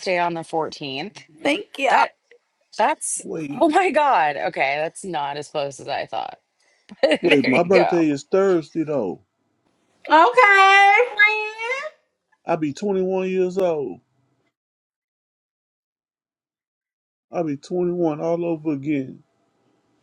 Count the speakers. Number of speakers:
3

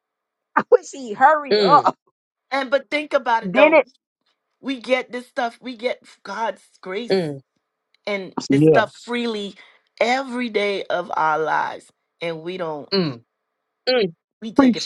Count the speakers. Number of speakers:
3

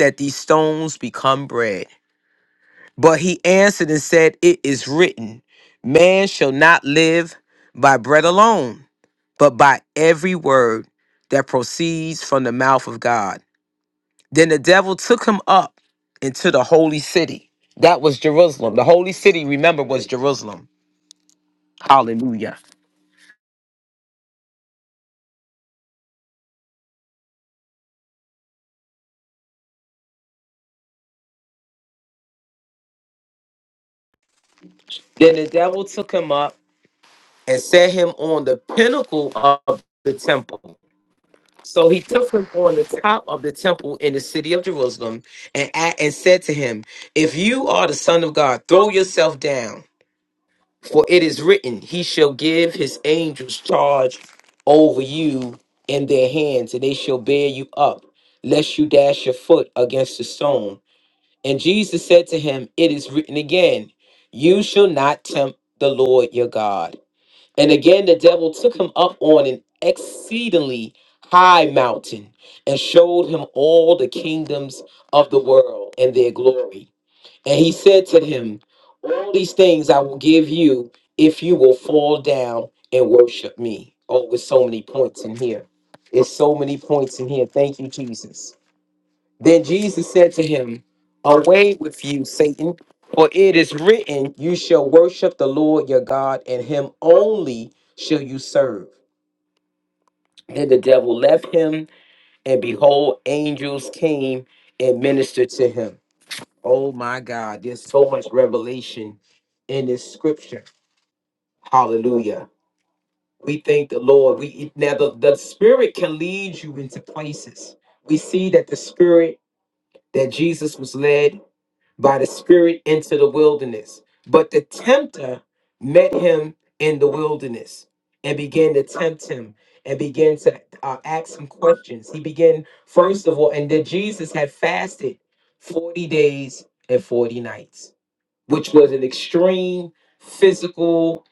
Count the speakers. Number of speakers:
1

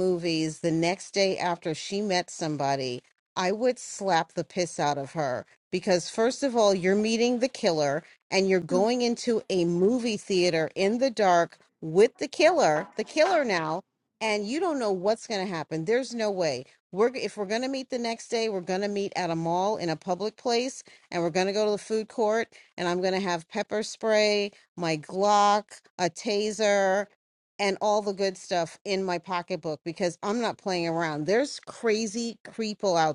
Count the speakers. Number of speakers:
1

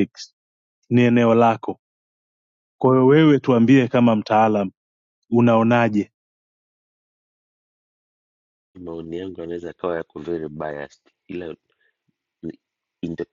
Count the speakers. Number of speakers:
2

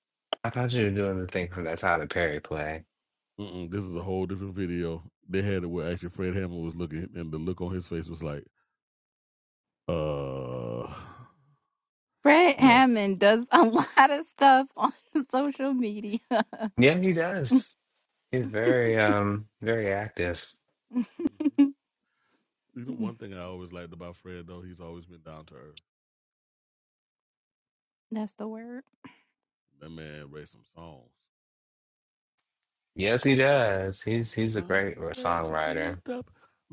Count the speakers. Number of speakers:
3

